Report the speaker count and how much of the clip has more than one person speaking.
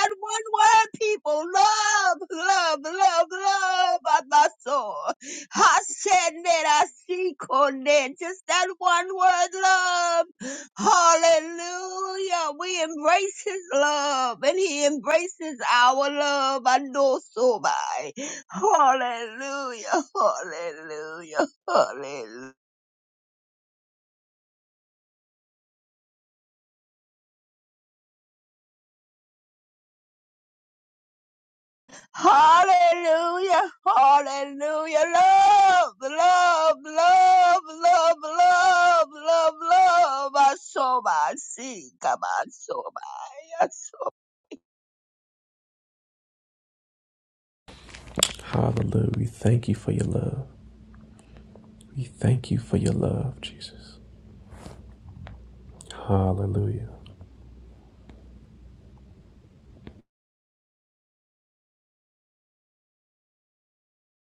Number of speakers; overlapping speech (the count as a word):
two, no overlap